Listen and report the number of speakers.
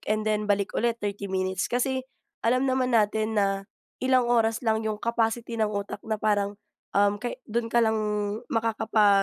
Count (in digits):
1